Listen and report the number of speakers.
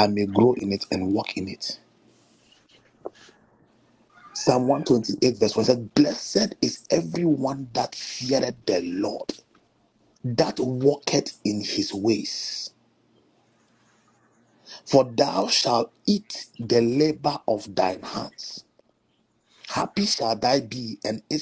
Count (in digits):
1